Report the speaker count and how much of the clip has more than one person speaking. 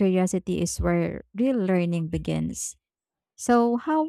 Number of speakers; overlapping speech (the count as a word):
one, no overlap